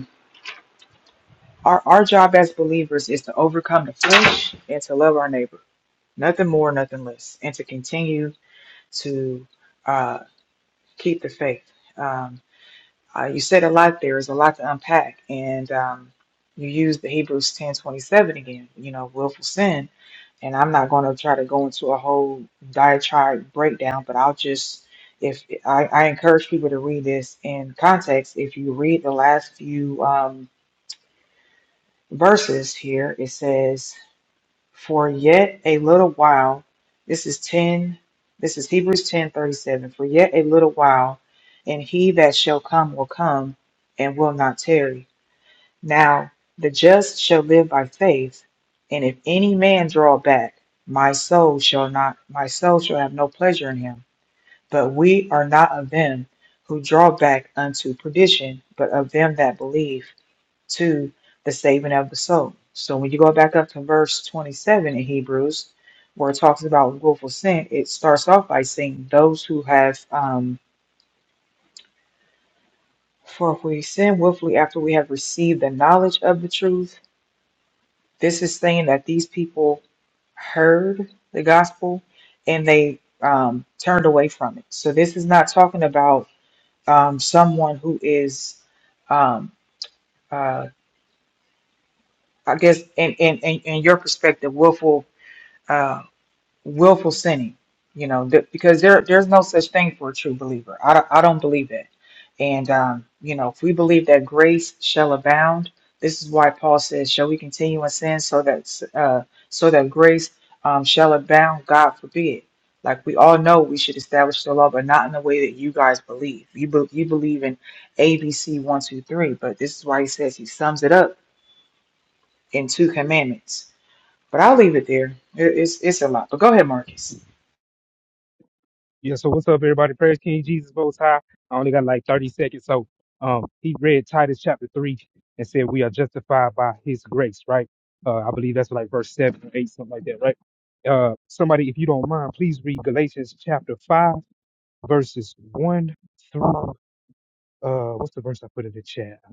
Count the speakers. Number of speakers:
2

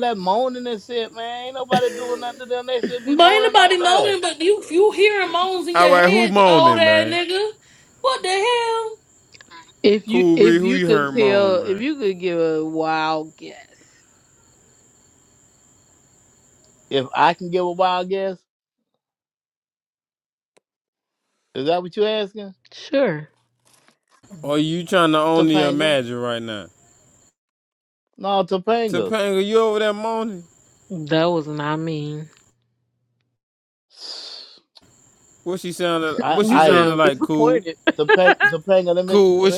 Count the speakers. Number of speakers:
4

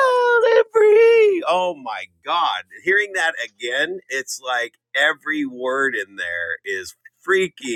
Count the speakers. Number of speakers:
1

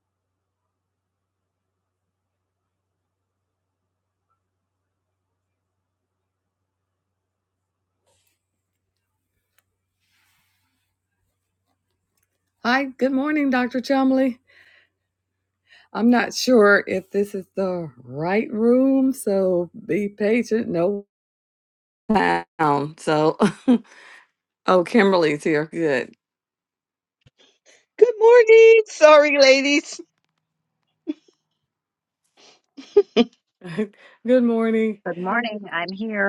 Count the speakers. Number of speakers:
3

